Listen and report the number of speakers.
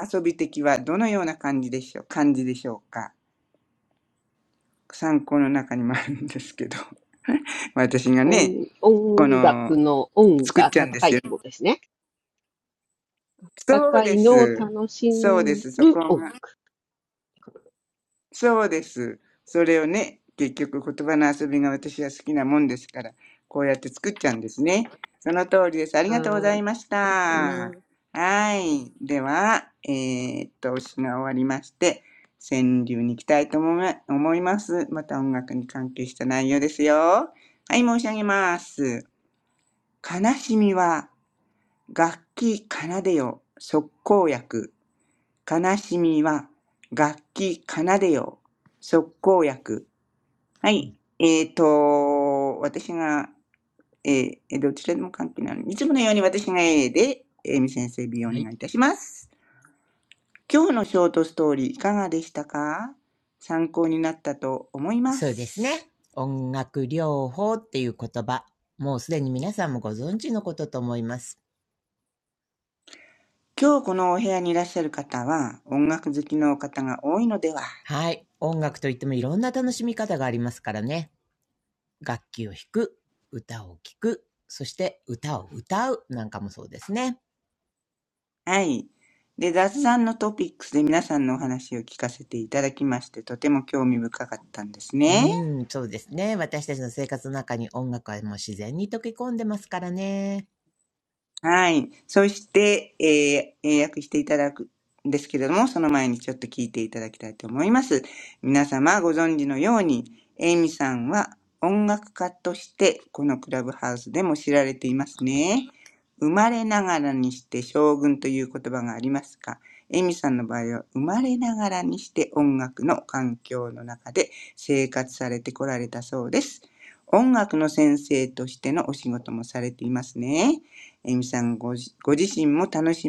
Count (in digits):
3